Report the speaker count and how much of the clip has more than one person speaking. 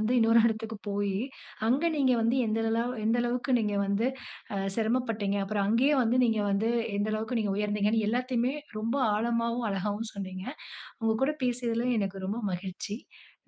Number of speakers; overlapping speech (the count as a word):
one, no overlap